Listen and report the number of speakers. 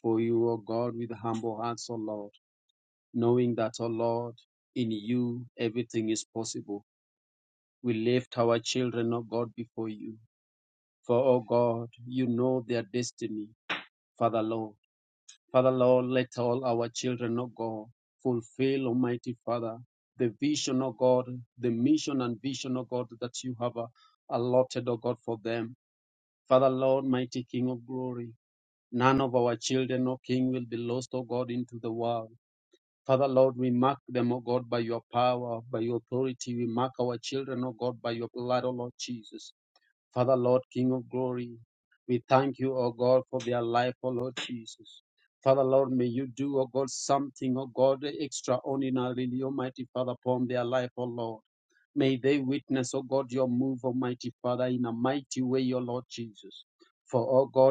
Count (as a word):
one